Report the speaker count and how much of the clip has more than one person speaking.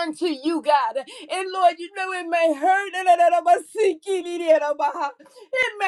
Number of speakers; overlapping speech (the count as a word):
one, no overlap